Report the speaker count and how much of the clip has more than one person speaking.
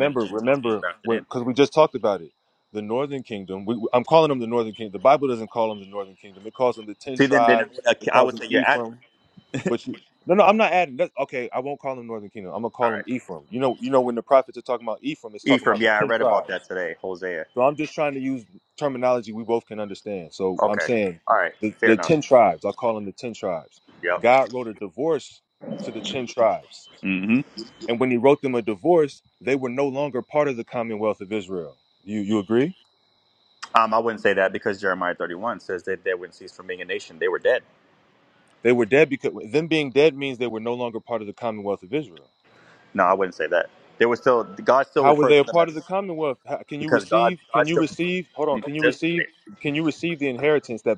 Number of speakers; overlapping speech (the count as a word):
two, about 15%